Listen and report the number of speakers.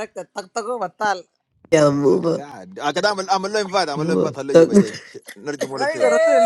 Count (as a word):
three